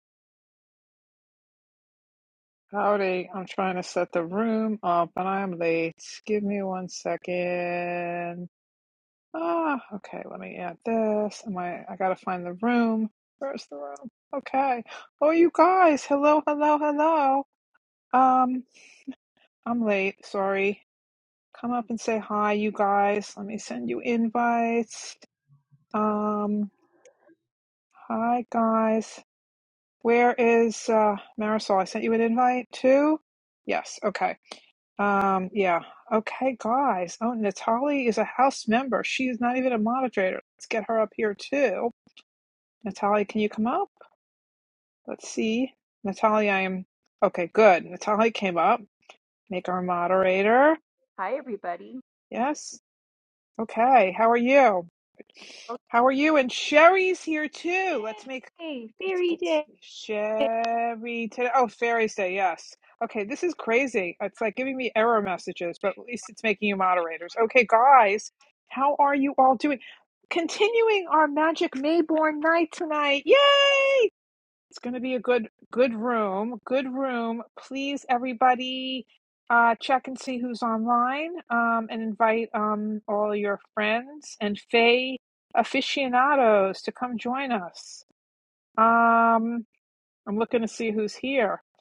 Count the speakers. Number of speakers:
two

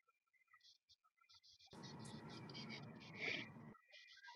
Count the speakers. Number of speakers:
zero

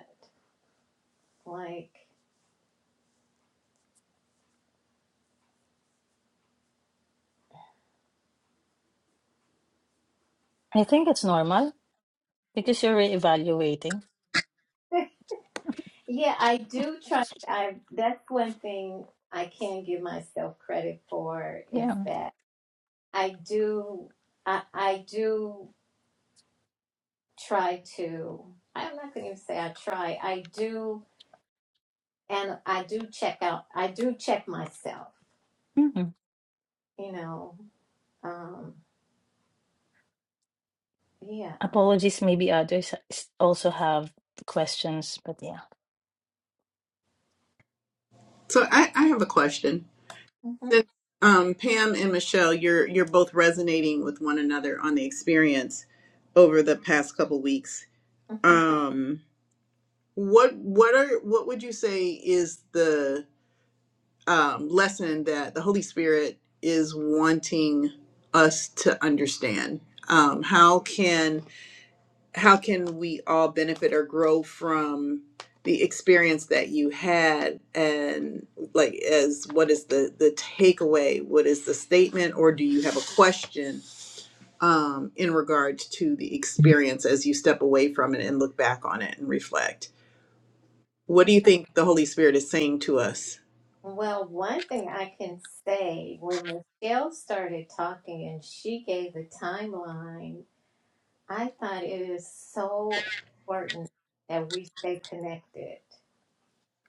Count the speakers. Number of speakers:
three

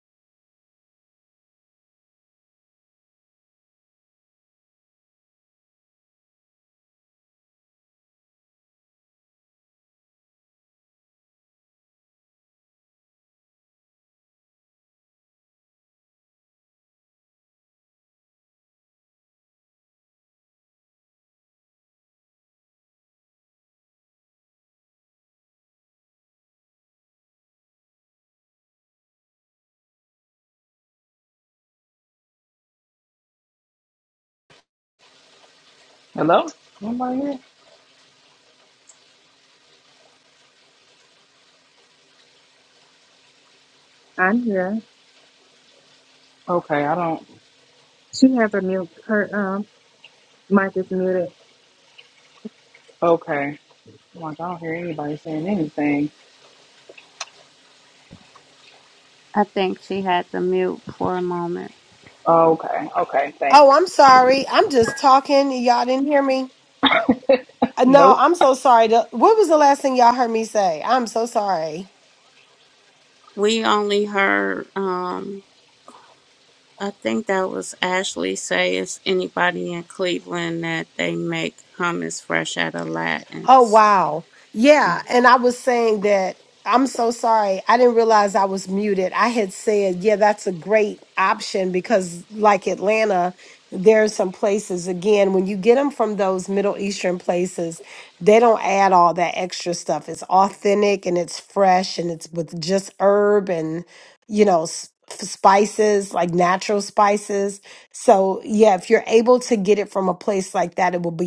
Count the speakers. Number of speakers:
four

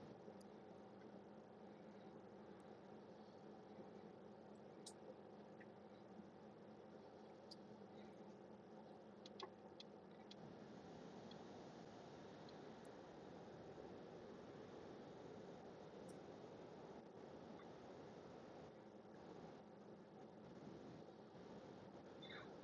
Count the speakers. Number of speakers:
zero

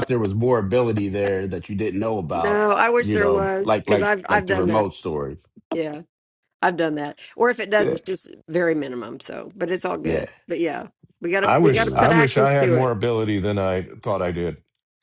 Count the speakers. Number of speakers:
three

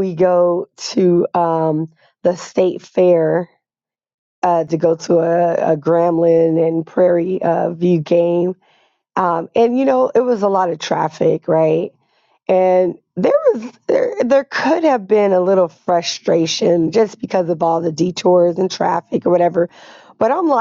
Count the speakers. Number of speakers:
one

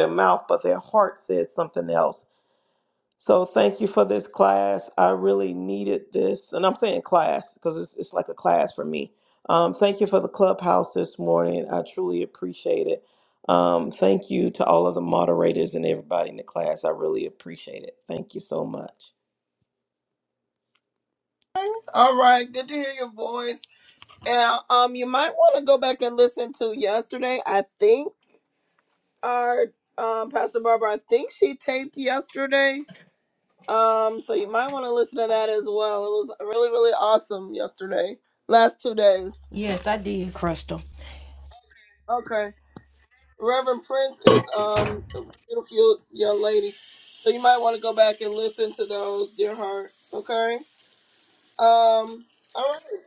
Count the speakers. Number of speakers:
three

